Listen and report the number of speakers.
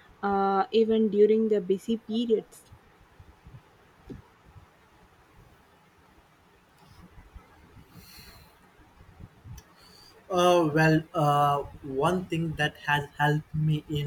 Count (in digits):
2